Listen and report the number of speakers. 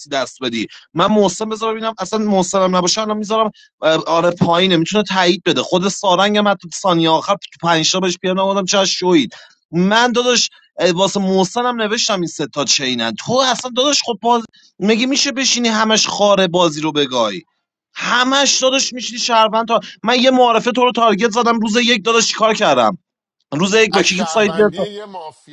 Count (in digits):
2